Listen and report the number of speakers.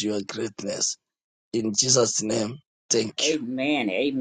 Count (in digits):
2